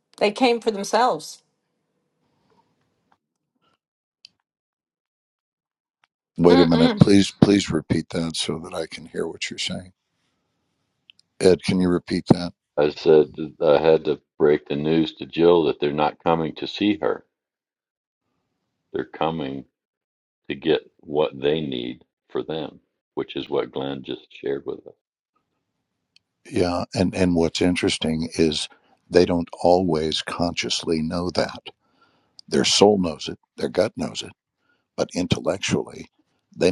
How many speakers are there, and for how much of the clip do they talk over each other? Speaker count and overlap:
3, about 1%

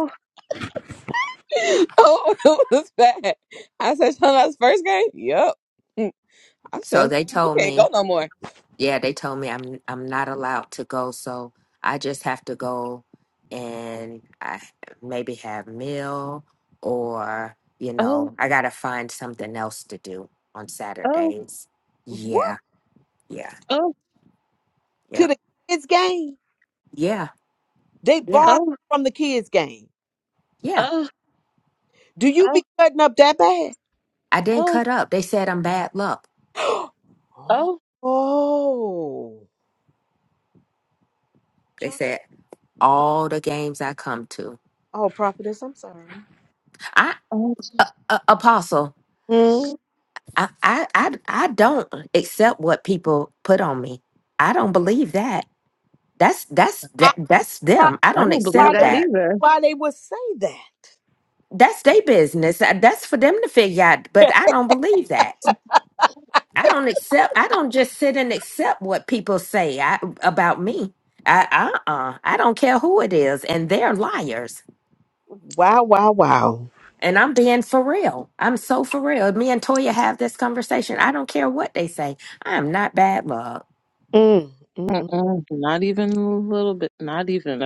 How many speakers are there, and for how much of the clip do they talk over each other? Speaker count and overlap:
4, about 5%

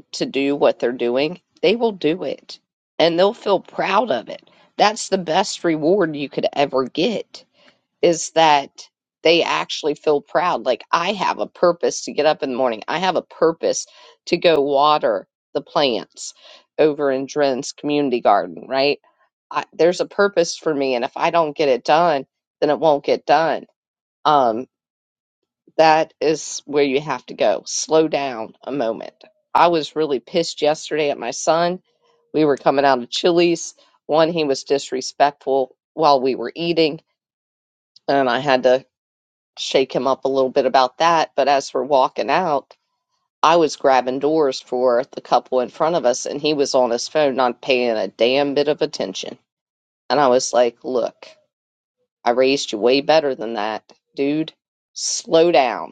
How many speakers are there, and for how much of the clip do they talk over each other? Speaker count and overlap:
1, no overlap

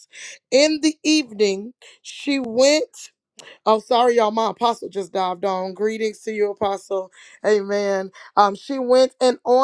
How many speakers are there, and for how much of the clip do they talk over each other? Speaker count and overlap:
1, no overlap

